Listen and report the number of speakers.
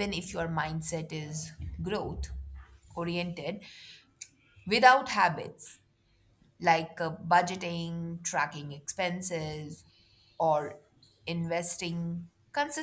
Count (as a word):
one